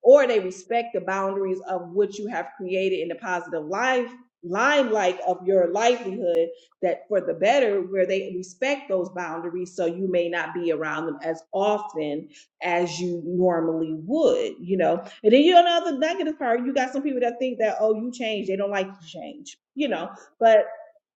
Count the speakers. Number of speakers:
one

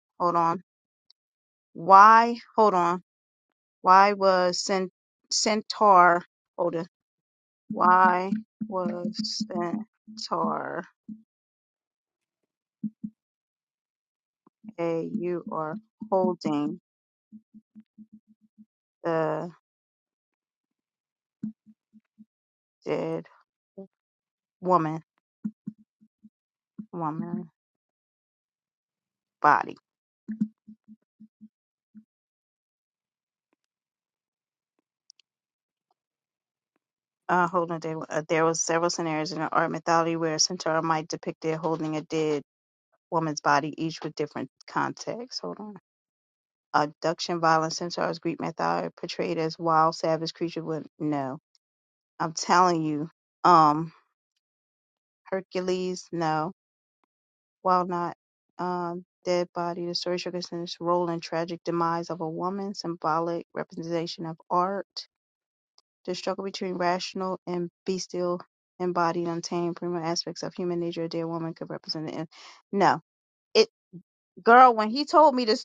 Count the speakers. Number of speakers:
one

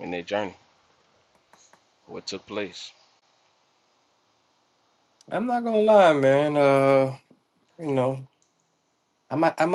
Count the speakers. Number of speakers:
two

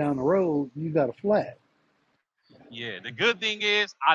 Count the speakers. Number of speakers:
two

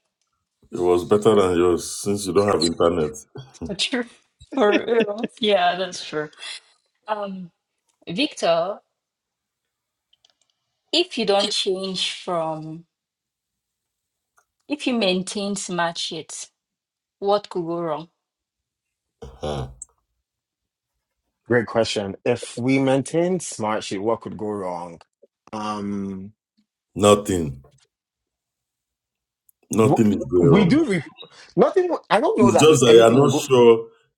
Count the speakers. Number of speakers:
three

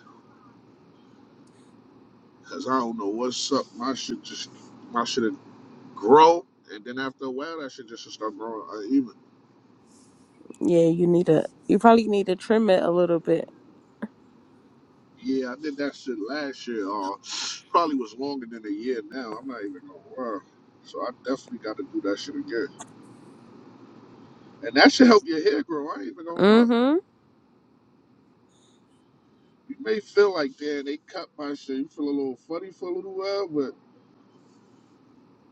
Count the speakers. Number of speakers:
two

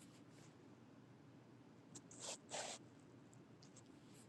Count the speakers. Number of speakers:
zero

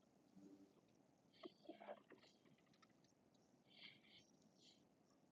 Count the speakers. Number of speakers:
zero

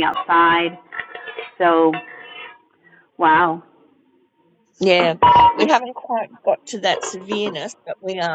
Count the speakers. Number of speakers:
two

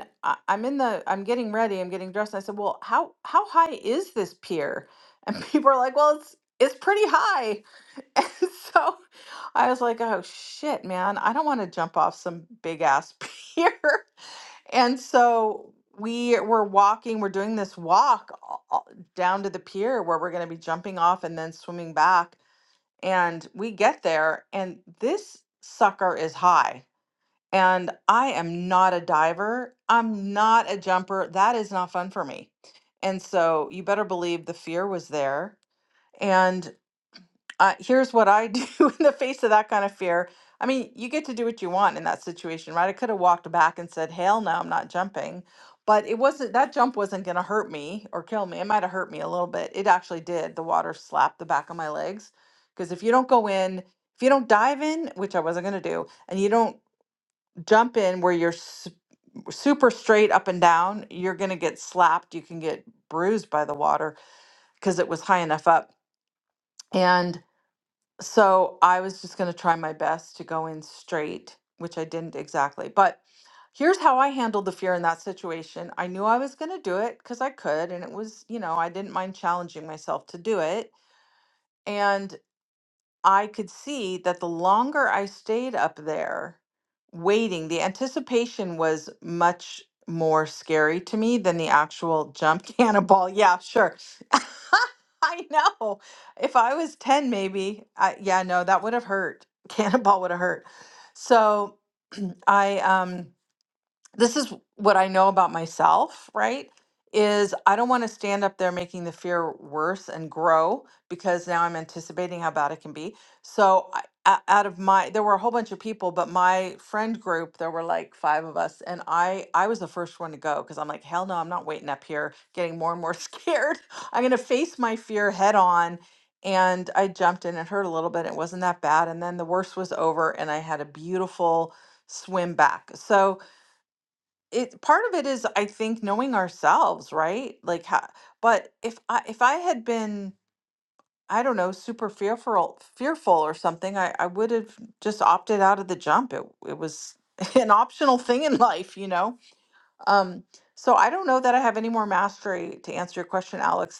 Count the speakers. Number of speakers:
one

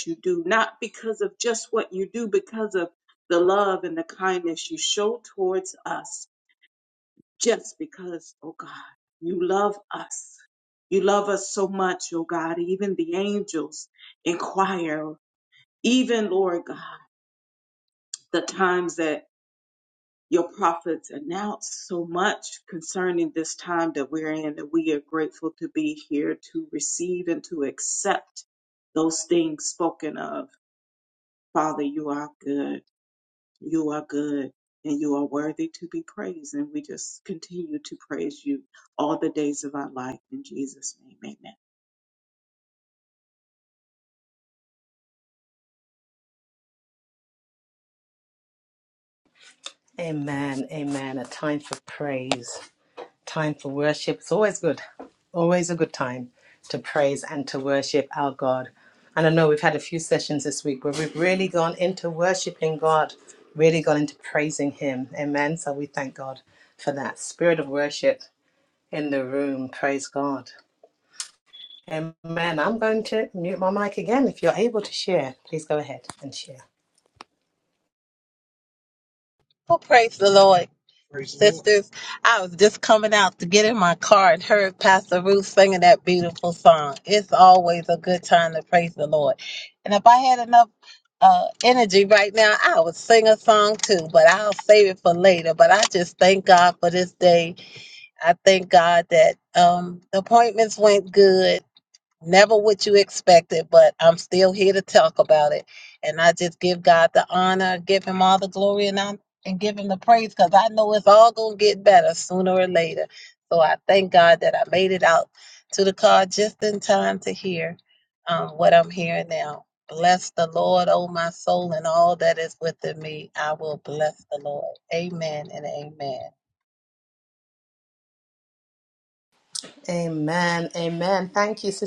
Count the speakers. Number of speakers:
three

